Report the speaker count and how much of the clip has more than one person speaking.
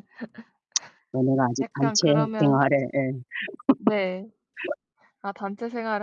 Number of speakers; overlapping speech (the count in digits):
2, about 17%